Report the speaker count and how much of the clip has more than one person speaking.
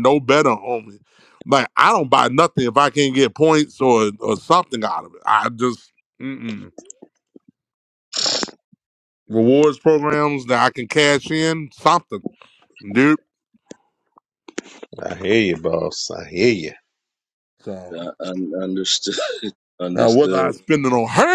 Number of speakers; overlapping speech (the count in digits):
3, about 3%